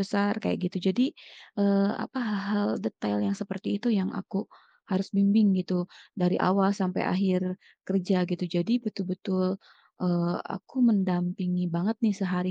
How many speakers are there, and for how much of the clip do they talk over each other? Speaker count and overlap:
1, no overlap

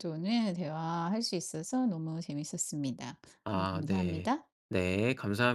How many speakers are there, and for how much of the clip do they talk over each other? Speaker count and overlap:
2, about 13%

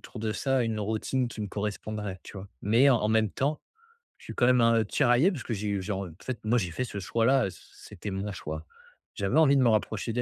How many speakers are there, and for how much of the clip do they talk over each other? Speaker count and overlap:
1, no overlap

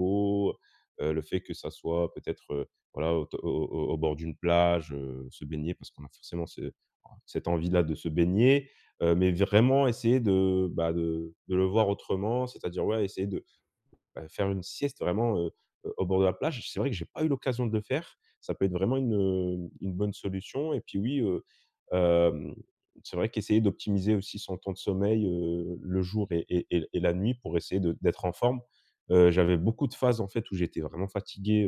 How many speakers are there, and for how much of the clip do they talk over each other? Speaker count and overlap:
1, no overlap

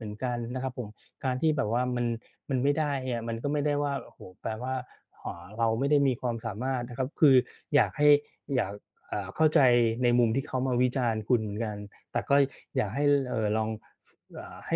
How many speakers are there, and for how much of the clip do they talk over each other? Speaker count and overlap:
1, no overlap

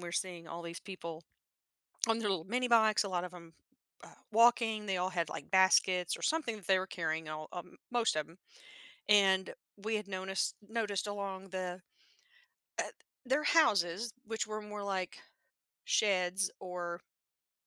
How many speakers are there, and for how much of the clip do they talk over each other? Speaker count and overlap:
1, no overlap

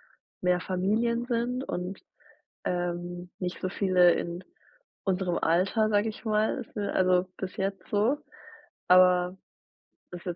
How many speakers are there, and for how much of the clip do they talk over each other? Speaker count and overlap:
1, no overlap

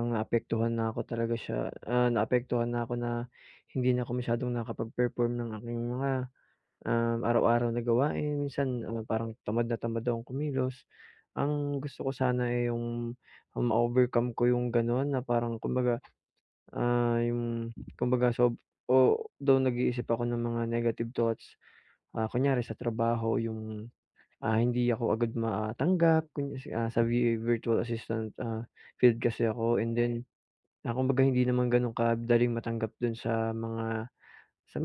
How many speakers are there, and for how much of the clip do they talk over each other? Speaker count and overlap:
1, no overlap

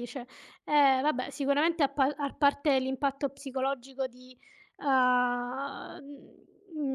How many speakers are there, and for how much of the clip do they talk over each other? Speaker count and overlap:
1, no overlap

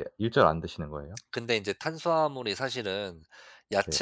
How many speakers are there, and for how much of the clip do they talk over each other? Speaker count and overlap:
2, about 4%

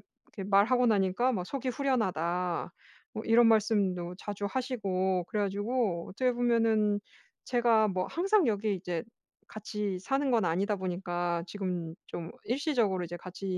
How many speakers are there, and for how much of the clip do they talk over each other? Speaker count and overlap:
1, no overlap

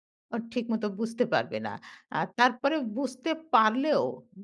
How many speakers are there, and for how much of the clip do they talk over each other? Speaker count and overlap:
1, no overlap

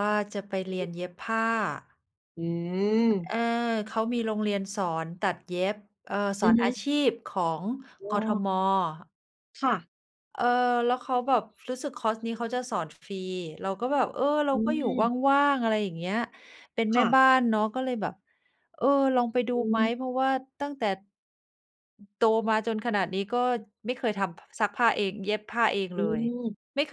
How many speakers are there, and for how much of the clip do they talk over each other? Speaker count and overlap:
2, about 6%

